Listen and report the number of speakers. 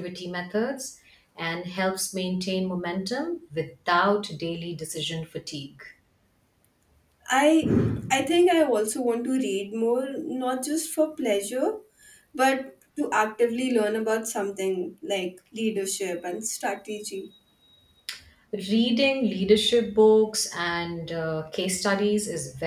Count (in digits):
2